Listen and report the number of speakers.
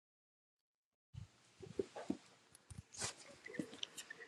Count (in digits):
0